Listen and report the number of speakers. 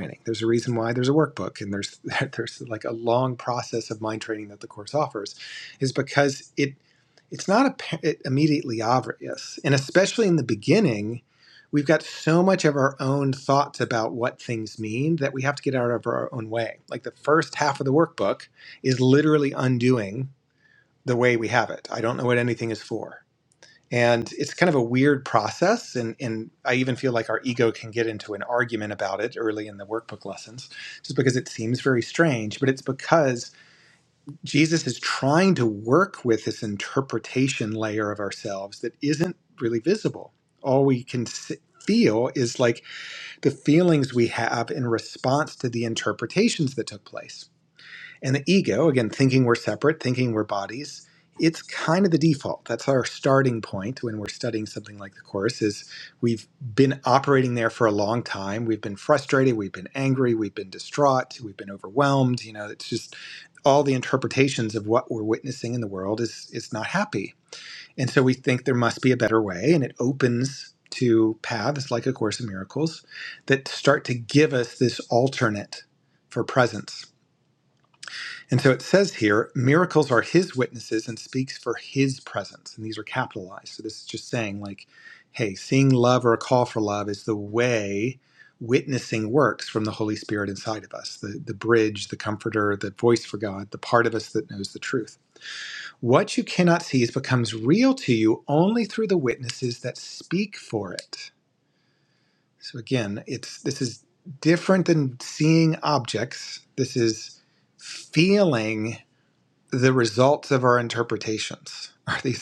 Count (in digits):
1